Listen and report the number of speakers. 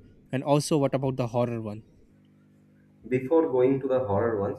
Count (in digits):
2